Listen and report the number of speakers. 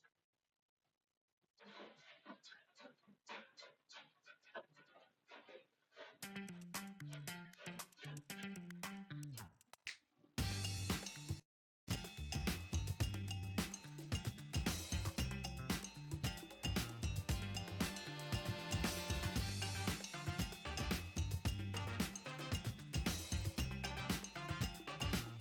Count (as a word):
zero